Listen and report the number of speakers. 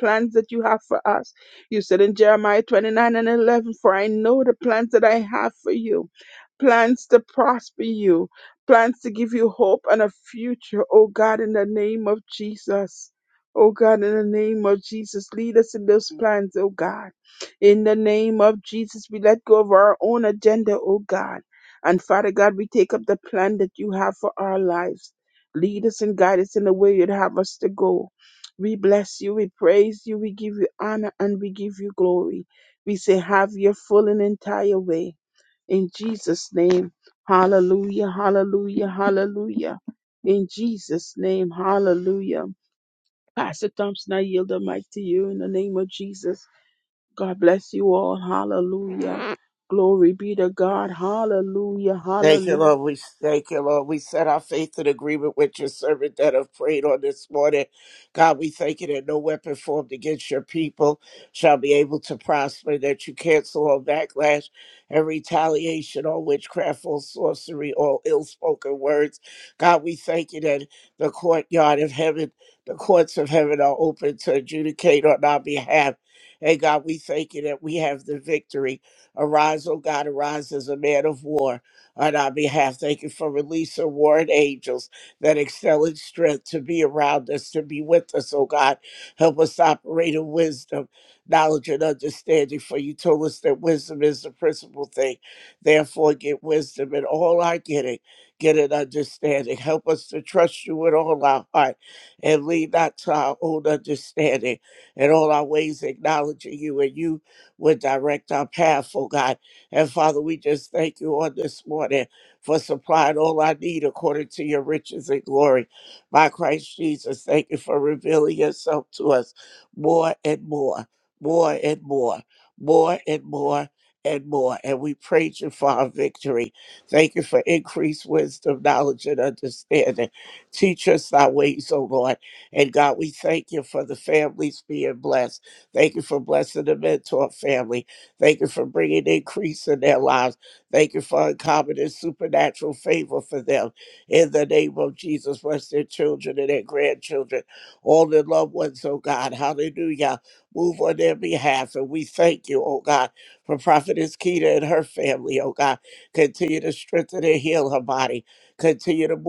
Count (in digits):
2